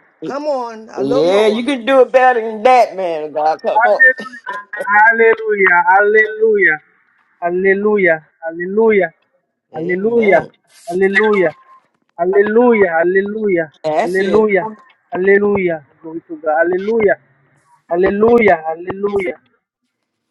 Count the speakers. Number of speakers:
3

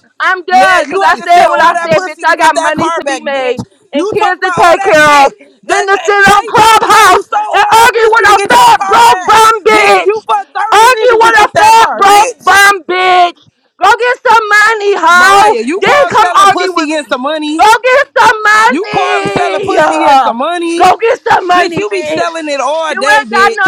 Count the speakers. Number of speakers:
2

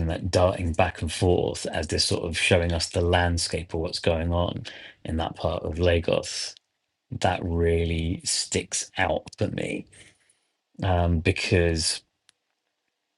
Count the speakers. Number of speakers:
1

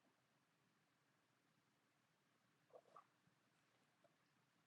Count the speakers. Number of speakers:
0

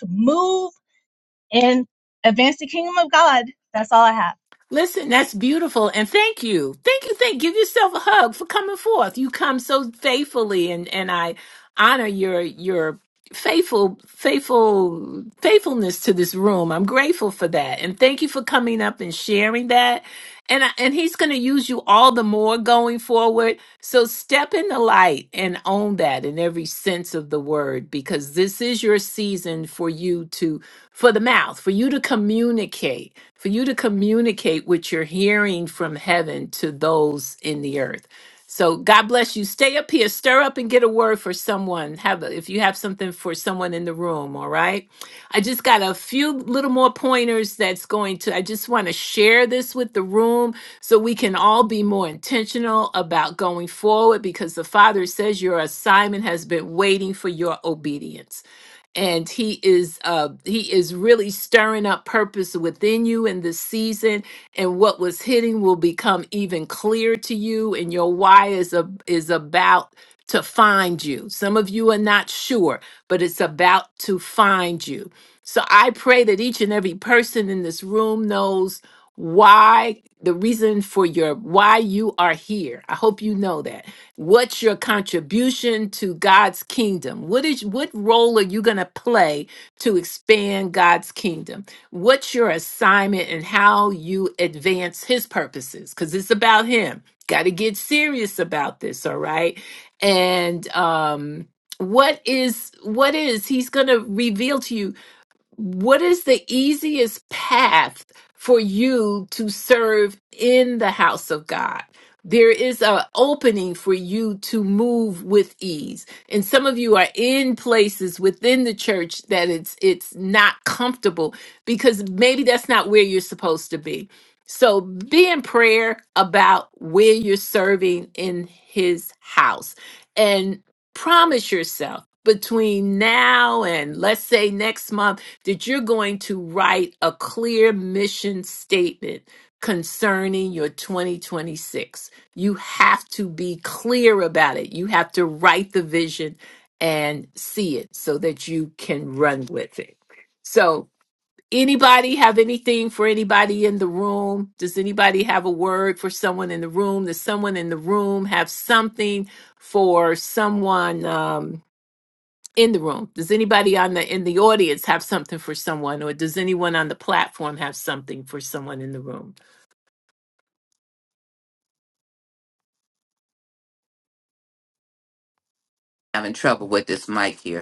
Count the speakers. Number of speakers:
3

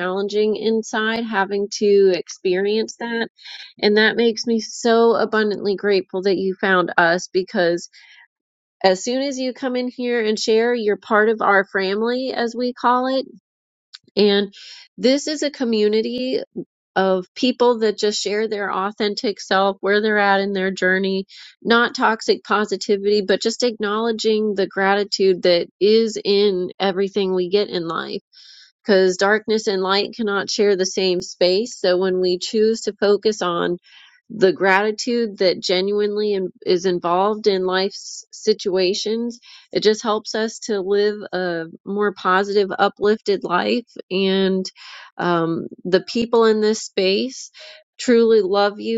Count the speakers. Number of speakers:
1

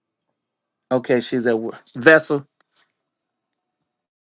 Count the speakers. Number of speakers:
1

